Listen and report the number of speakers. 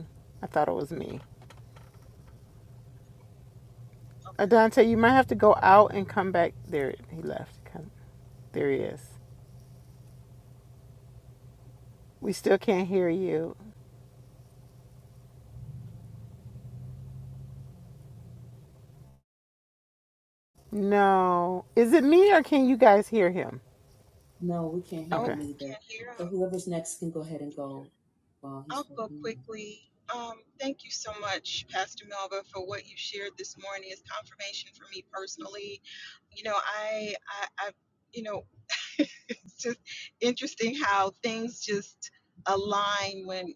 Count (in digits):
3